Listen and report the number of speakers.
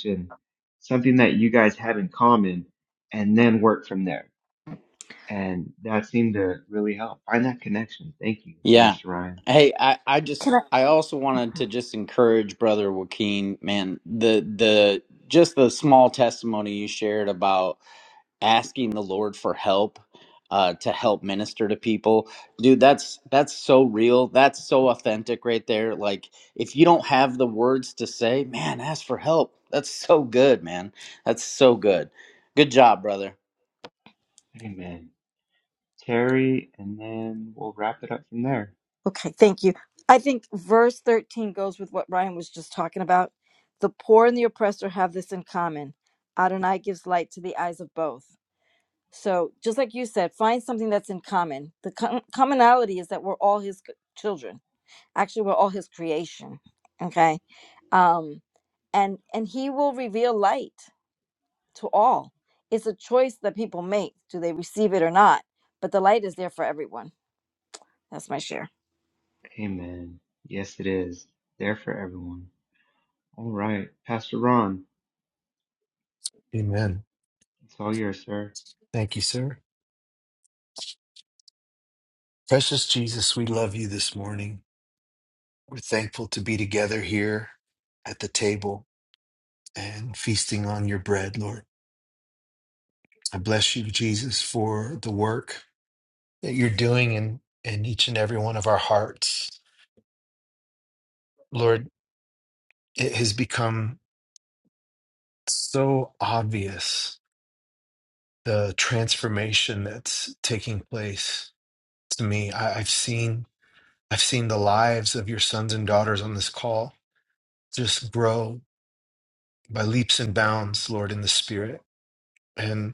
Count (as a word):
four